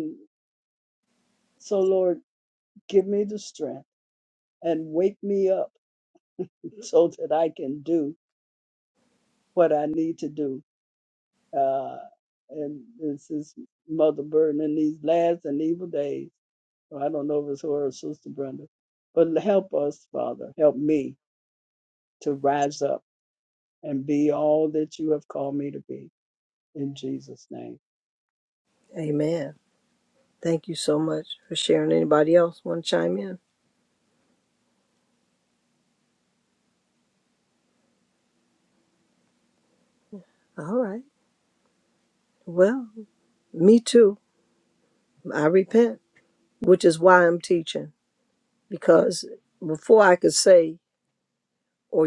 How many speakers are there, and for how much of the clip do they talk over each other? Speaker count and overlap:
2, no overlap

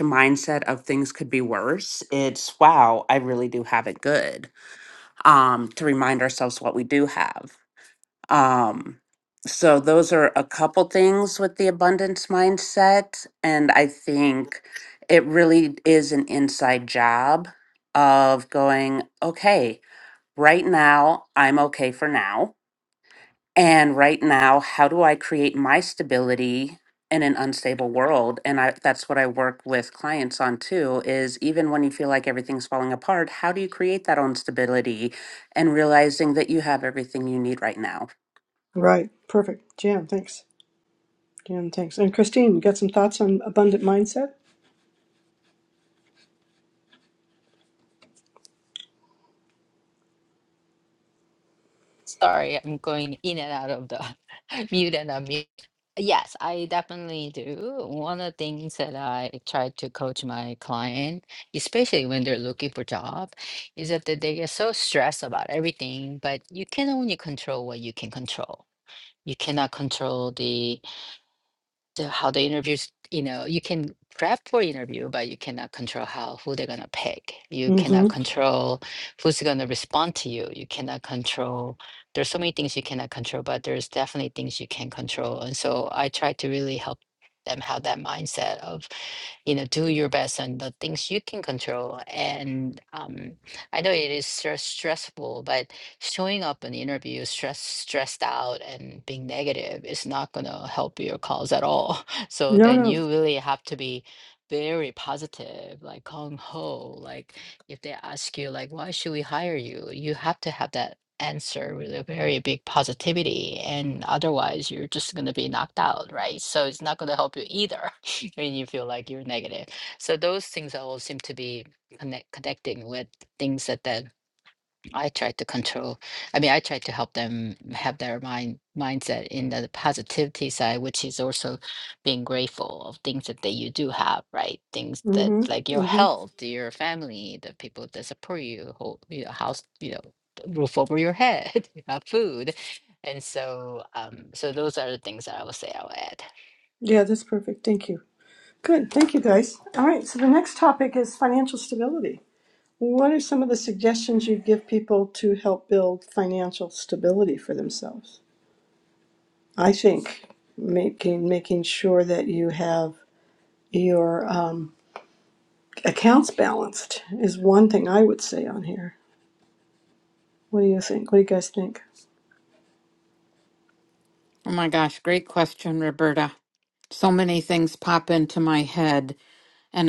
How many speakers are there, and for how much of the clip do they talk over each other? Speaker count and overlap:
4, about 1%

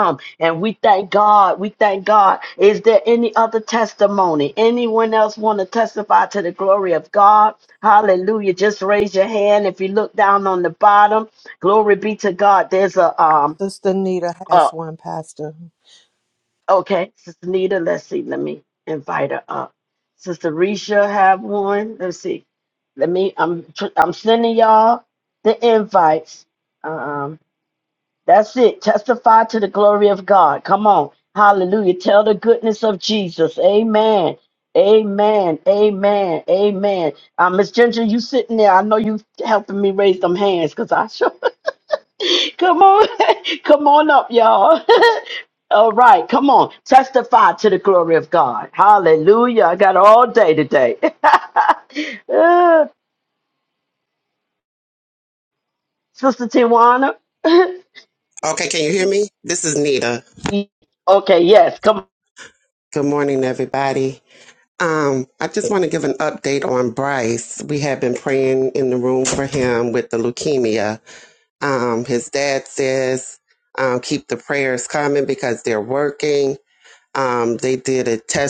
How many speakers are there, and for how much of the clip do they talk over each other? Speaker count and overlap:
3, no overlap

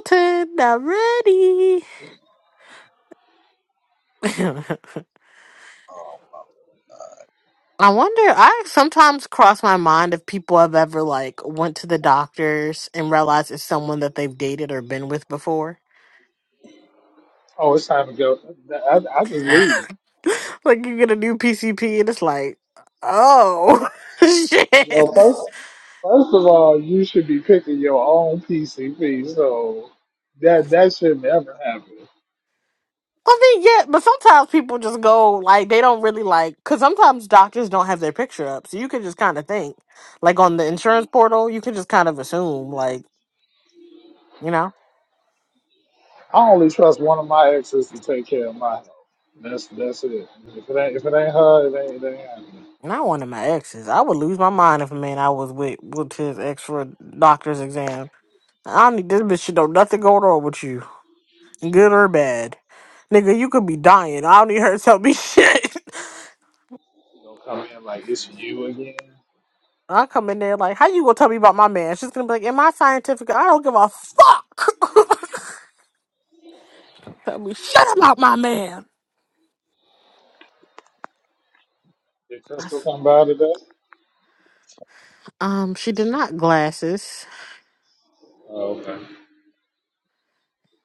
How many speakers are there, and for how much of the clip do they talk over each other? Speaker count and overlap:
2, under 1%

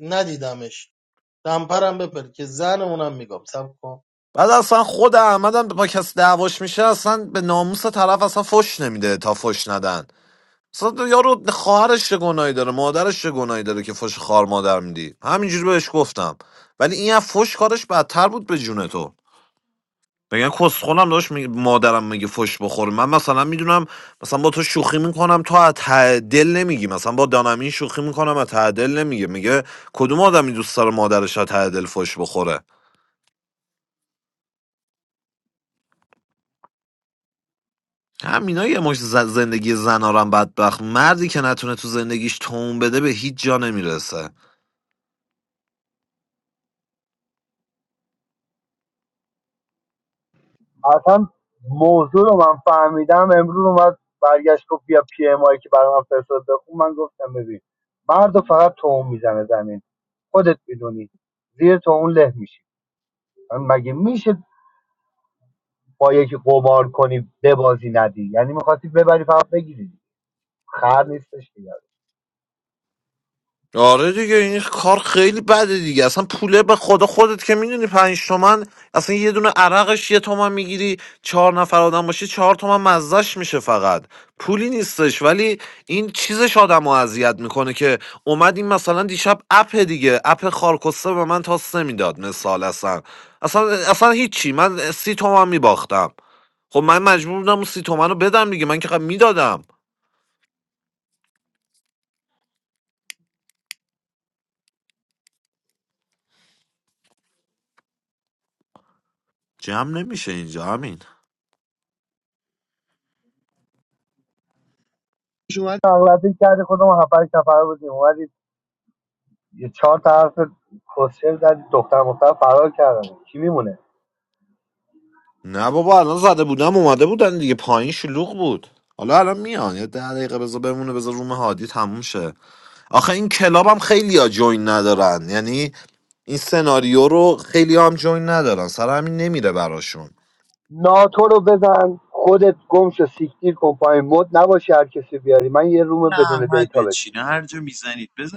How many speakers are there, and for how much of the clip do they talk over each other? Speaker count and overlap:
4, about 1%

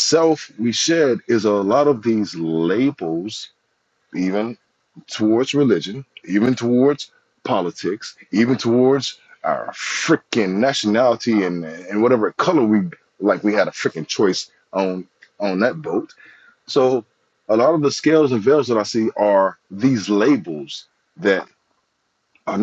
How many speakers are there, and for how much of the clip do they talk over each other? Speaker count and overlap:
1, no overlap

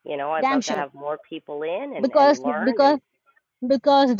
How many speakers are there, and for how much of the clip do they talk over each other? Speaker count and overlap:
2, about 33%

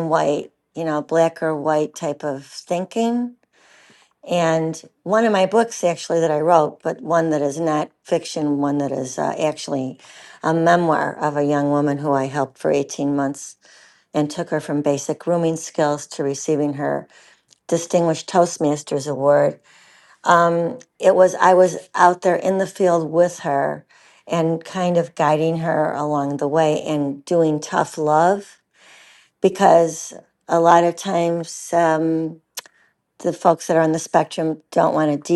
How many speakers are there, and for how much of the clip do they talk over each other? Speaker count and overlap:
1, no overlap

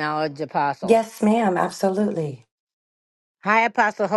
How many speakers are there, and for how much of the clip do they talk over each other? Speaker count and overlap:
2, about 3%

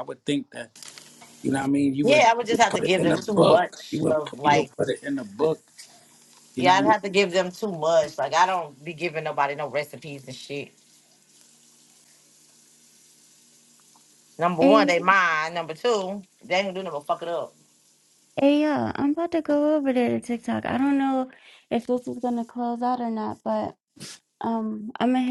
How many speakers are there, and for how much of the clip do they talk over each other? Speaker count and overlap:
3, about 13%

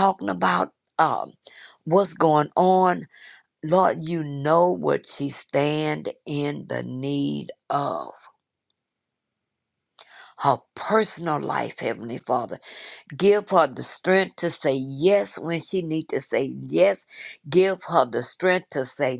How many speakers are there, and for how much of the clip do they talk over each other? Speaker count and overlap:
1, no overlap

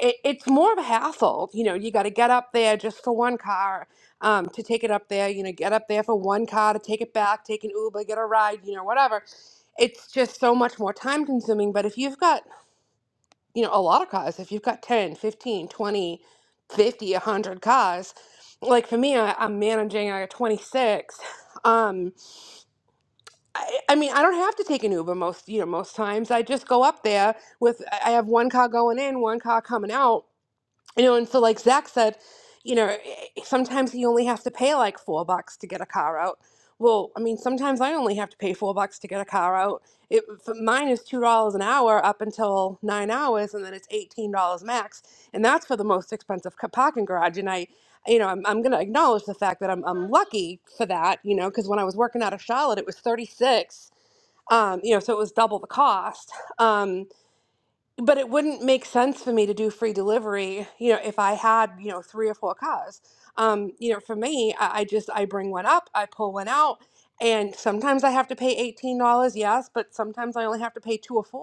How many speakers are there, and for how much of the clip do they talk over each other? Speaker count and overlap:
1, no overlap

